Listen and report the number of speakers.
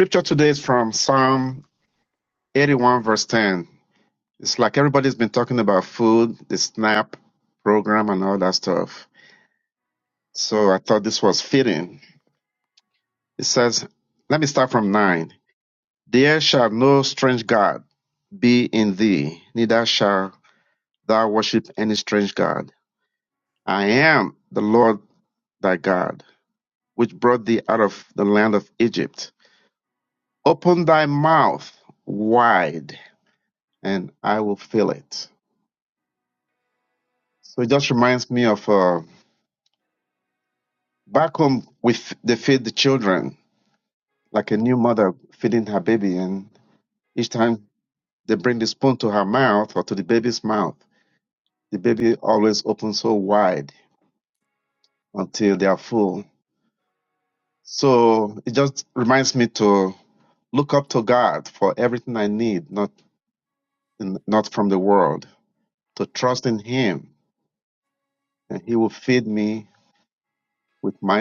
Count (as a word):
one